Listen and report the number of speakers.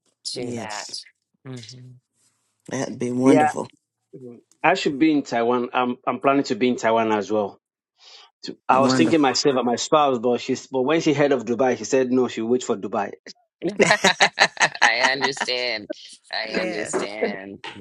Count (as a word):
three